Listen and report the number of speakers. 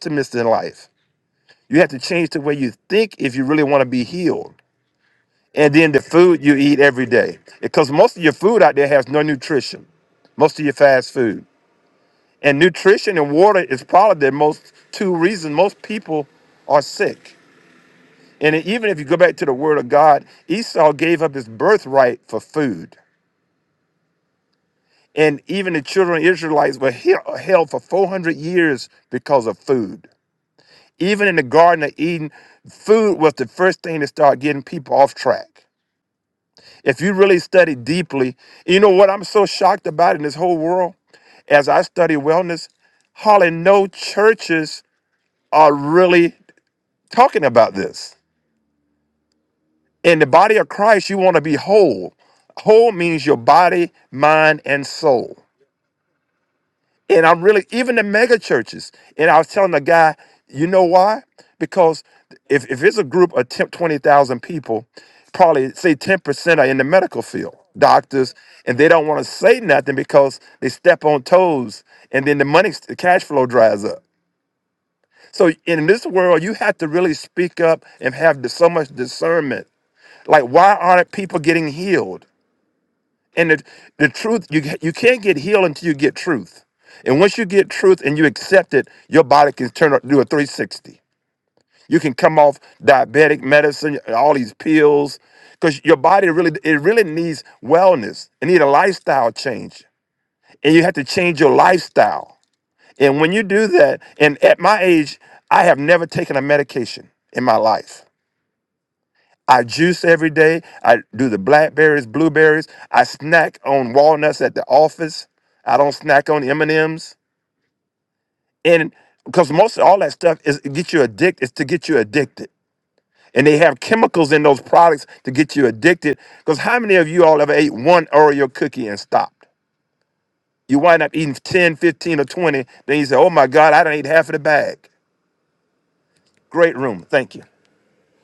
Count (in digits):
1